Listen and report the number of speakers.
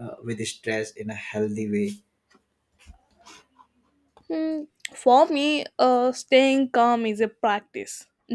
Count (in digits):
2